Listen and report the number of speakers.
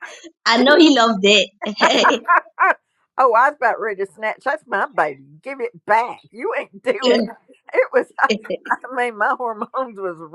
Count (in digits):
2